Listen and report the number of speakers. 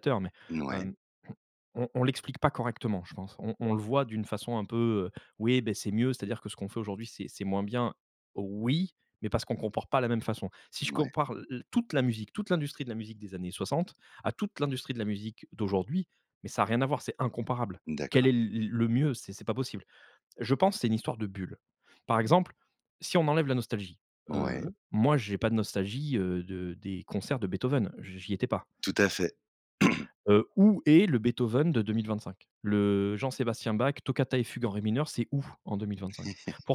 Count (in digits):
2